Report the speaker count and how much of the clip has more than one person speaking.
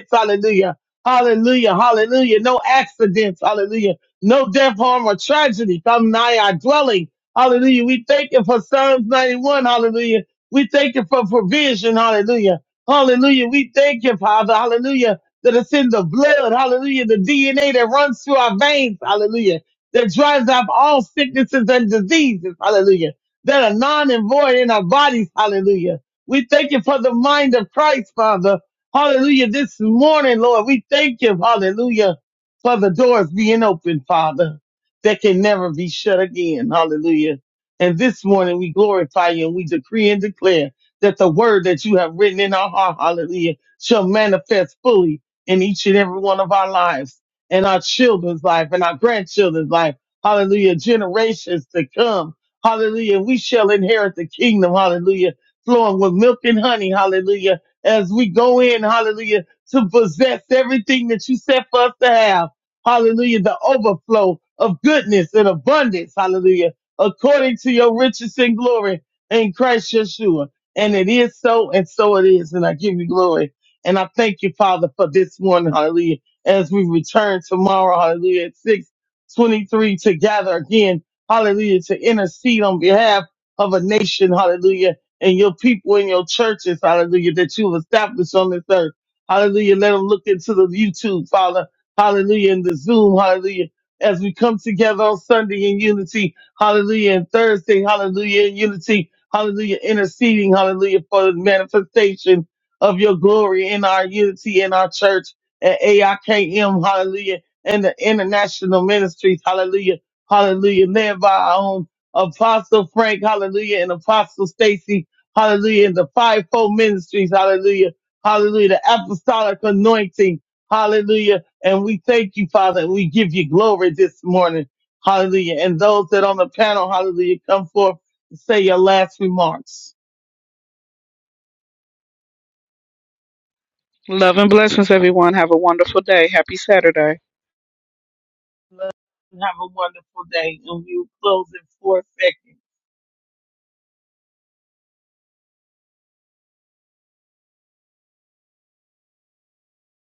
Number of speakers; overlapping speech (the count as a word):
two, no overlap